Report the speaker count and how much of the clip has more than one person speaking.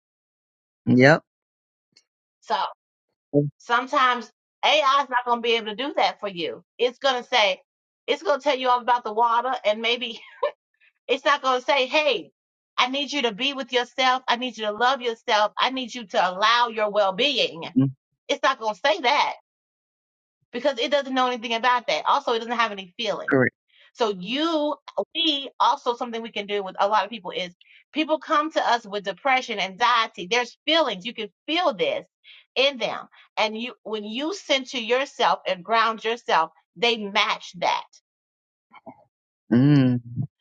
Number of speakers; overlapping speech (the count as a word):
two, no overlap